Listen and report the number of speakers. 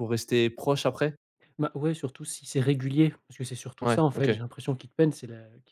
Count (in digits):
2